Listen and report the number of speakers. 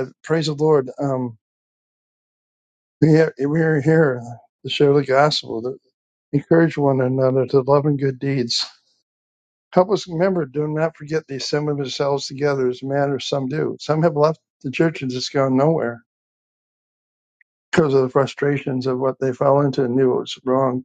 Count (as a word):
one